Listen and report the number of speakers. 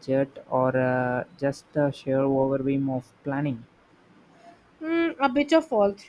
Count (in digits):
2